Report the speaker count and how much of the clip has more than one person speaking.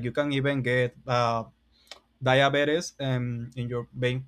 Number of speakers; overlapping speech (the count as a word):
one, no overlap